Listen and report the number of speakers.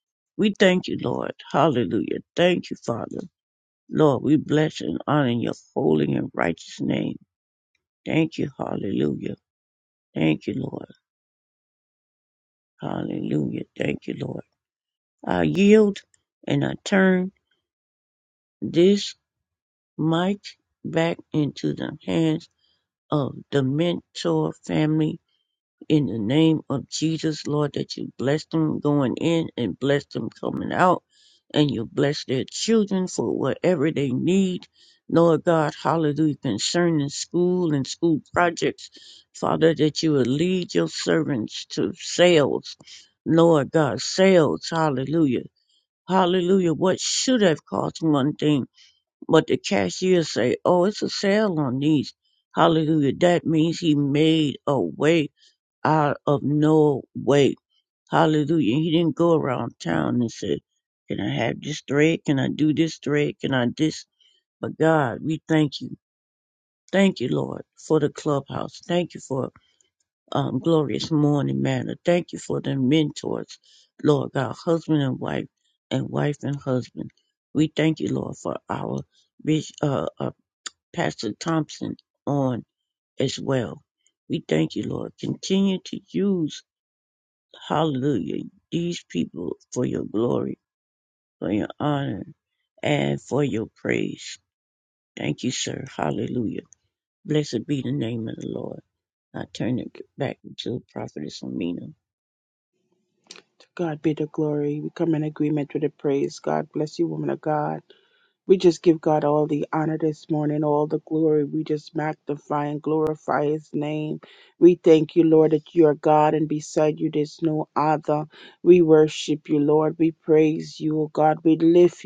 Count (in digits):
2